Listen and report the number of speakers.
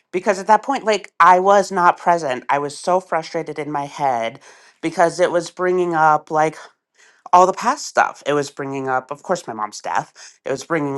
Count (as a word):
one